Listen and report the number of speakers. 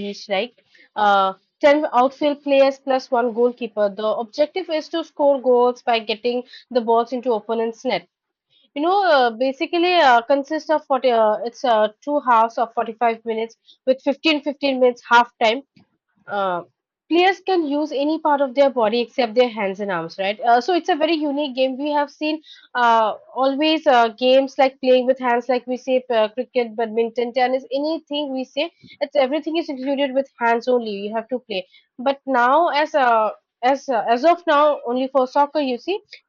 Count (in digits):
1